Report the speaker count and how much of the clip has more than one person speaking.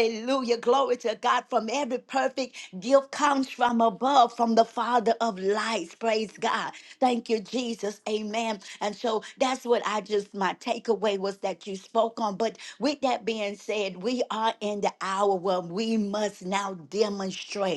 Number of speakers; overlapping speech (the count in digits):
1, no overlap